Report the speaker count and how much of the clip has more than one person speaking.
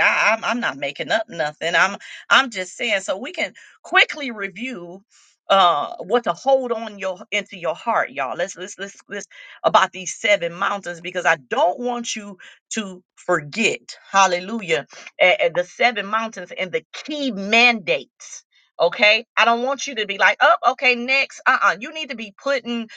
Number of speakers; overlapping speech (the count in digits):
1, no overlap